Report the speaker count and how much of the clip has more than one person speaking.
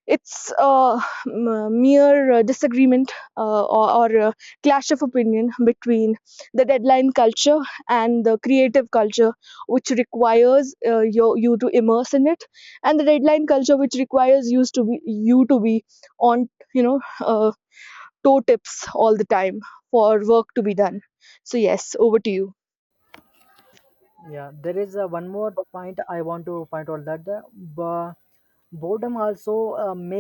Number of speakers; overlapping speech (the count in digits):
2, no overlap